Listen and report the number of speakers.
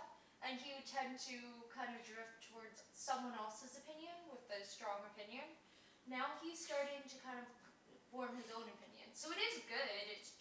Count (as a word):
one